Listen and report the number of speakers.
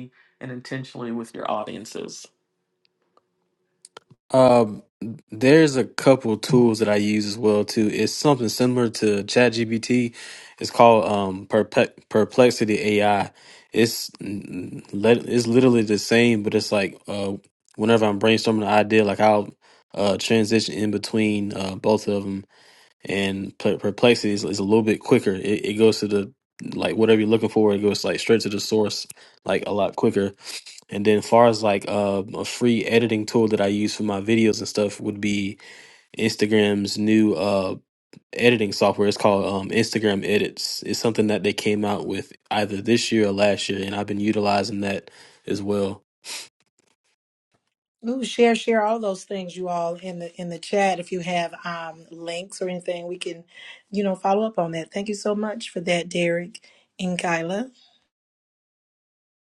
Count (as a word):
three